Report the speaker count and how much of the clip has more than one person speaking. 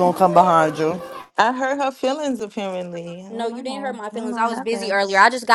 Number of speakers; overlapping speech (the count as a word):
three, about 31%